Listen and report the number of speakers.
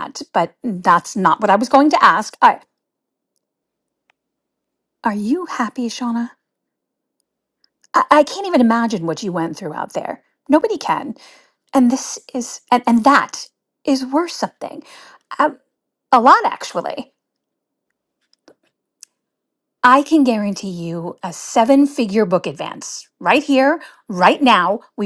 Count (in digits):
1